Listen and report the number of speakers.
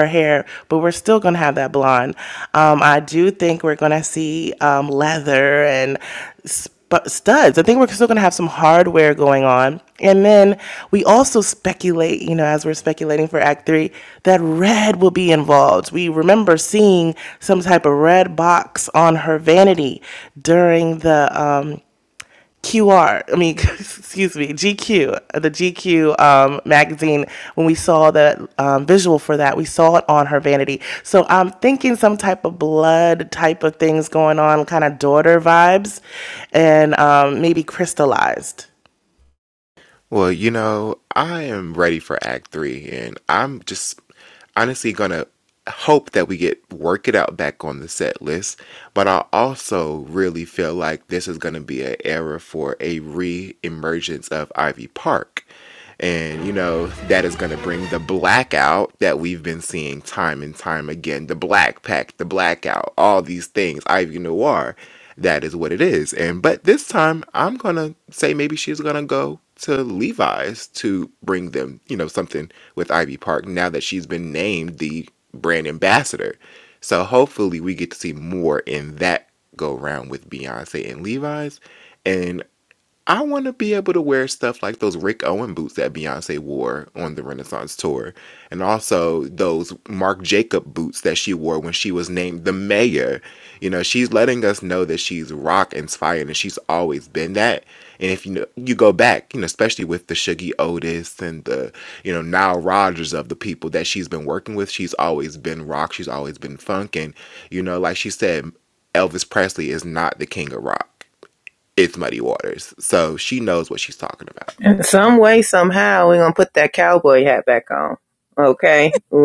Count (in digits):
3